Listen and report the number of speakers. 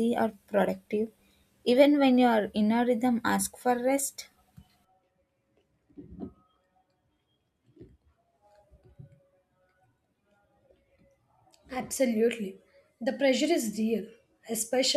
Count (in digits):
2